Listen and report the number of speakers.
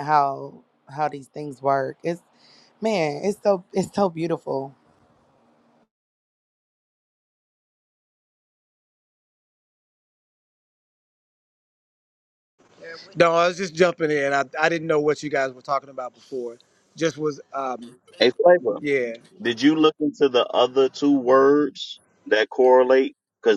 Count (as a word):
three